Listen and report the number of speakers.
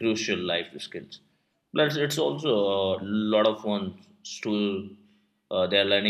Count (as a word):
one